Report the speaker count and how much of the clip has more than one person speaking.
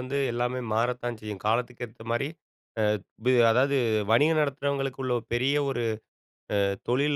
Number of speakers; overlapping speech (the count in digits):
1, no overlap